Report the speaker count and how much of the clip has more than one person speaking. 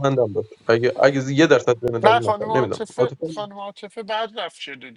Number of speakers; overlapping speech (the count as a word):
two, about 26%